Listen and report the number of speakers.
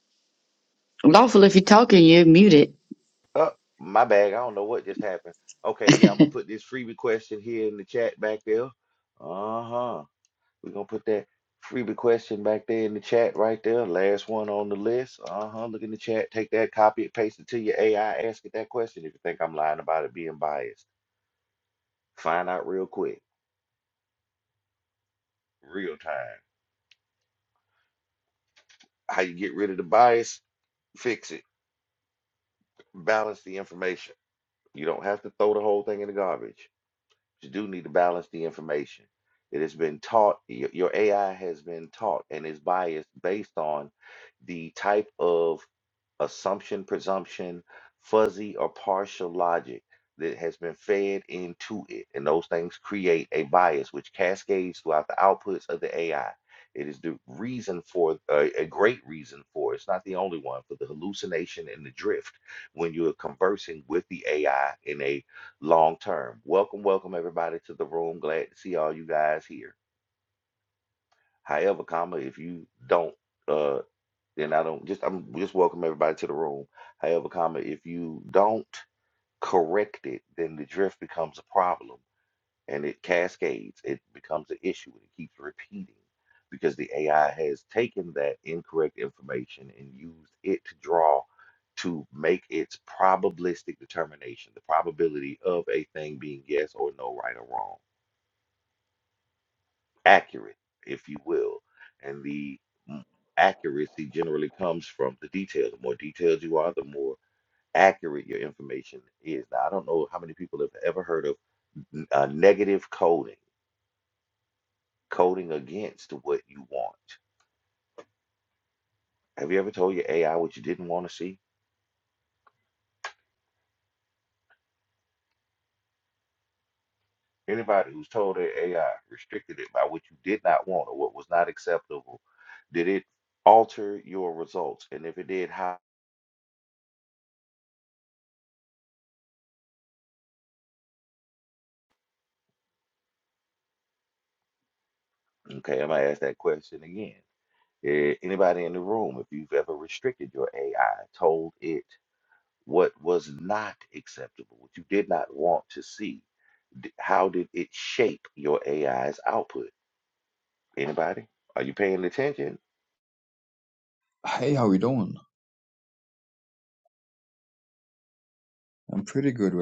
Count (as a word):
three